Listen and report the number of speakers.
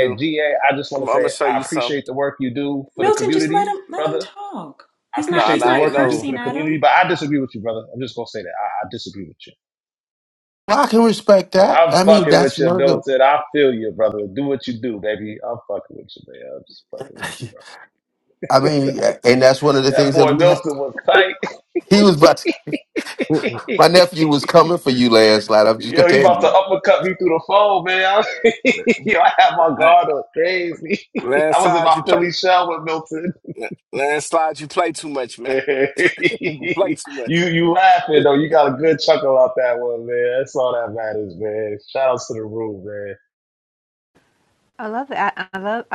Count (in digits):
5